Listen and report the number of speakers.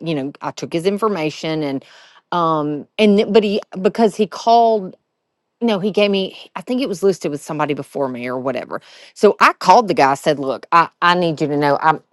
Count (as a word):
one